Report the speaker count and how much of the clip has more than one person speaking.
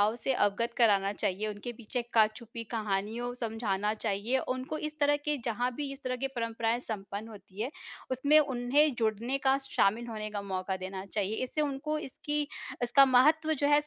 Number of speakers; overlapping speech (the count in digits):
1, no overlap